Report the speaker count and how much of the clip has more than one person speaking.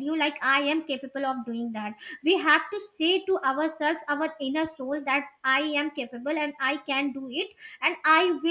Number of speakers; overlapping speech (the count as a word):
one, no overlap